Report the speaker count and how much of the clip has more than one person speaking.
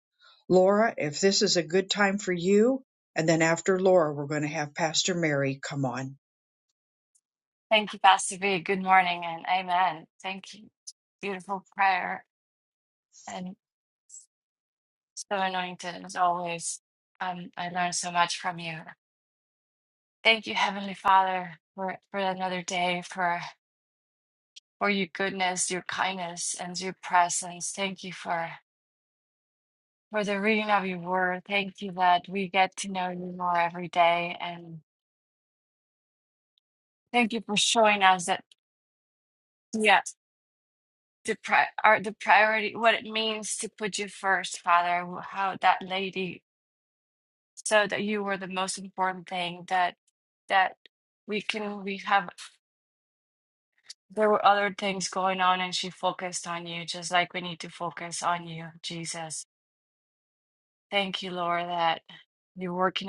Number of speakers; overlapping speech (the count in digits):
2, no overlap